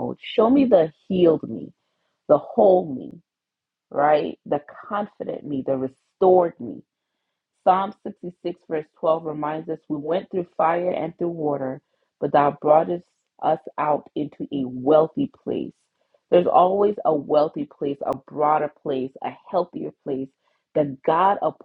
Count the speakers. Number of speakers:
one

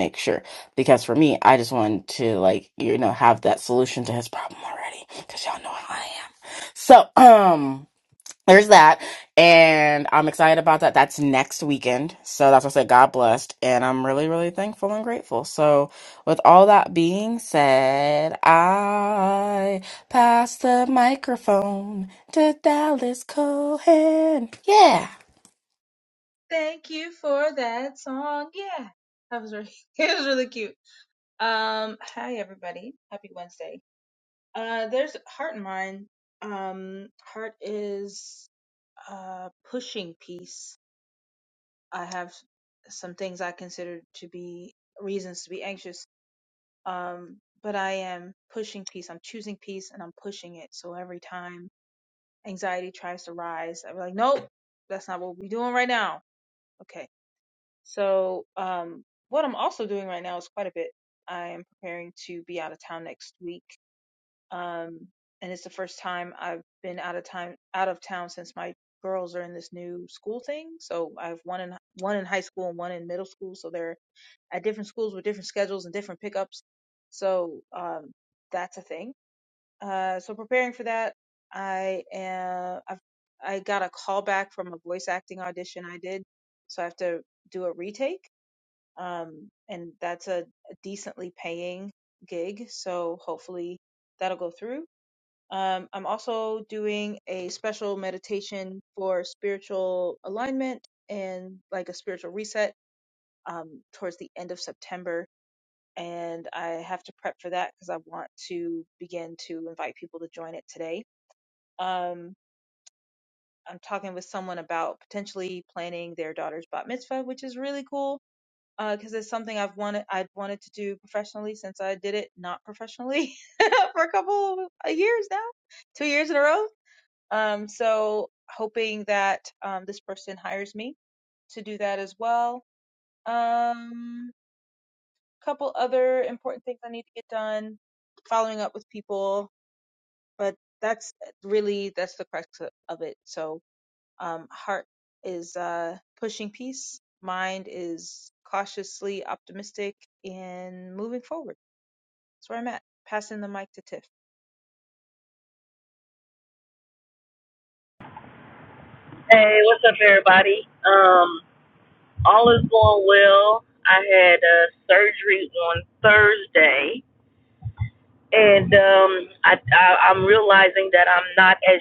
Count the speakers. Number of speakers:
three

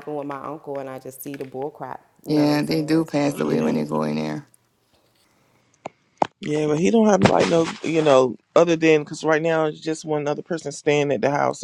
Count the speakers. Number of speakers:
three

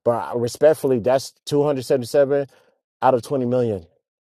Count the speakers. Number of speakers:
one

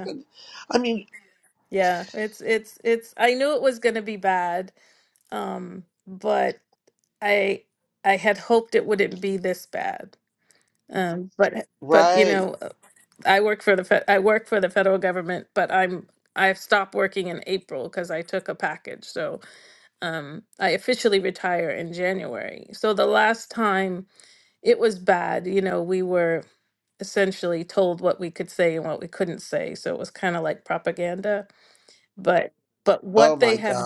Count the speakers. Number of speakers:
two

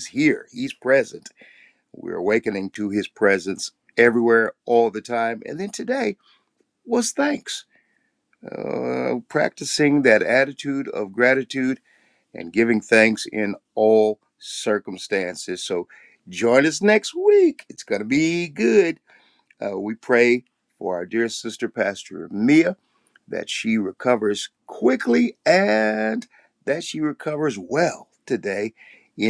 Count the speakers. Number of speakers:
one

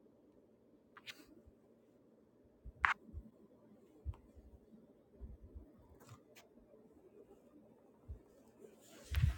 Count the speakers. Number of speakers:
zero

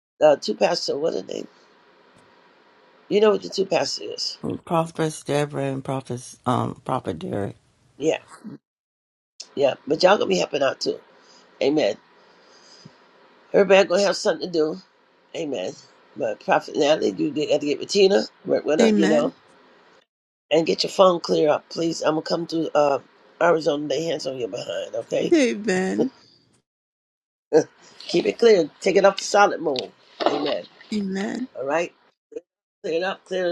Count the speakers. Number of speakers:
three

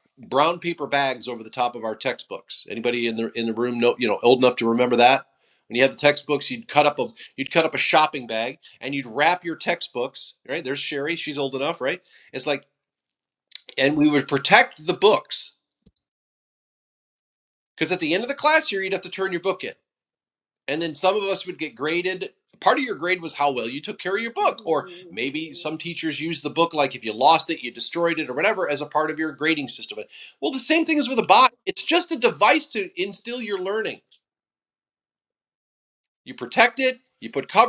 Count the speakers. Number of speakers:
one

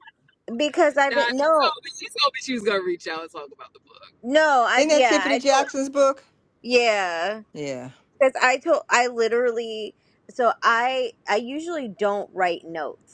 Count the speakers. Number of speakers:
three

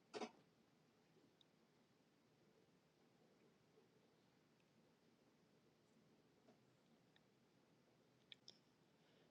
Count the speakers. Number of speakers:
zero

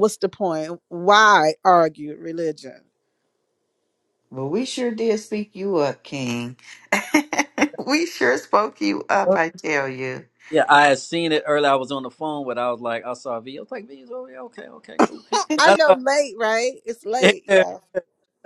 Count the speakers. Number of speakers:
three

